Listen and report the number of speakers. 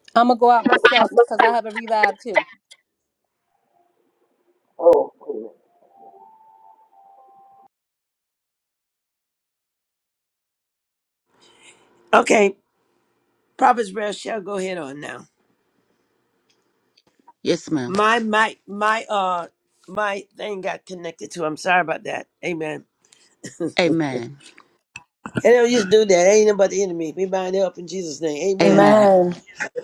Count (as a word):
three